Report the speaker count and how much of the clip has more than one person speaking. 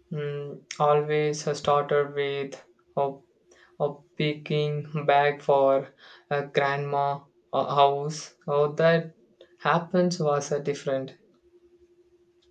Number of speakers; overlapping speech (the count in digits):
1, no overlap